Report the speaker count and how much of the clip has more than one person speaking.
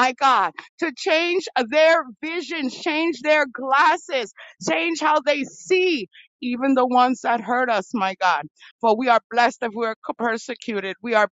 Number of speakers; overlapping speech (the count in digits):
1, no overlap